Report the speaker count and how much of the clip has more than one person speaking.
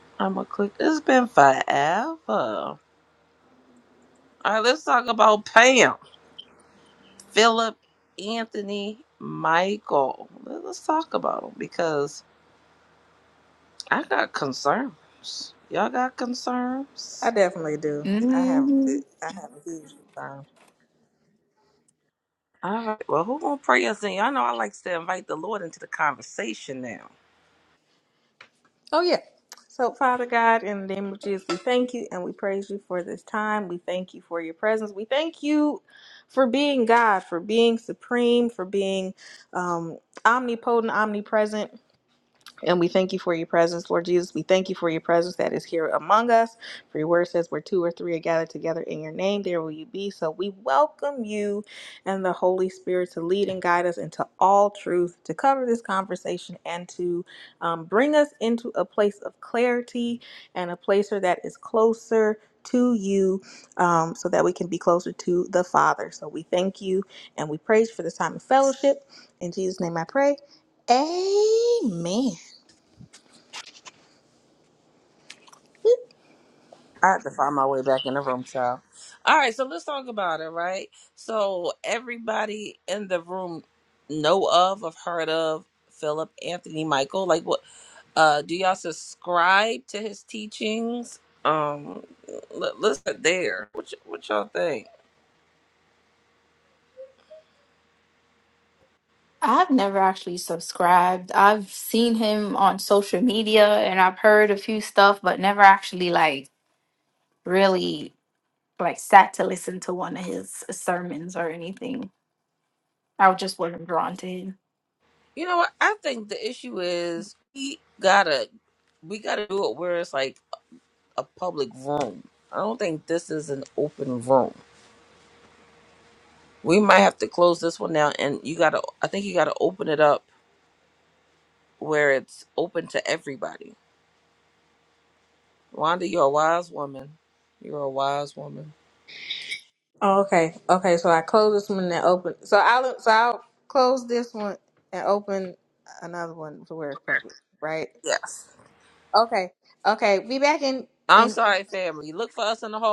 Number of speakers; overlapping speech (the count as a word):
three, about 1%